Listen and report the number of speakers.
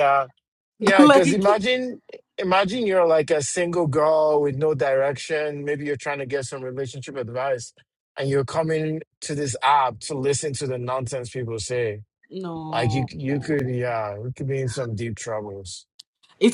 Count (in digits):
2